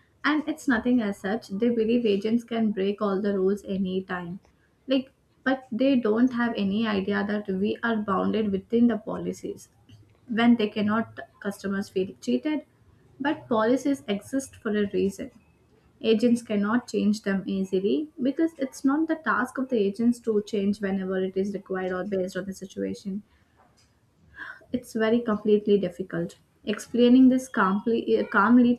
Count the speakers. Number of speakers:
1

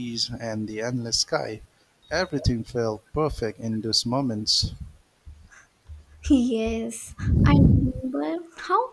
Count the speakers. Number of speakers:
2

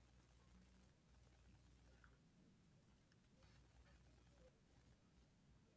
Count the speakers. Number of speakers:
0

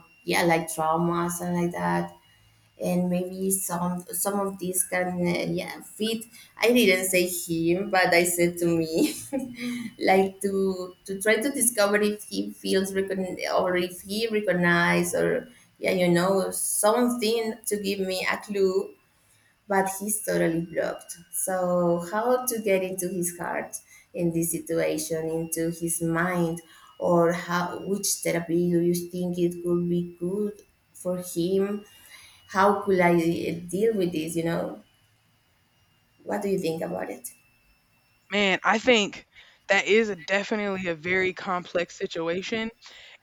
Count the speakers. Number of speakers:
2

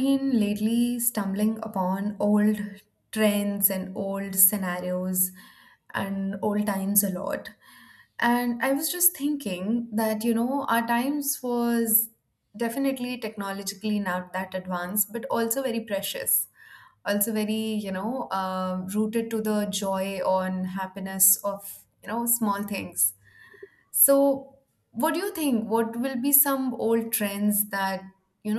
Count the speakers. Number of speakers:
1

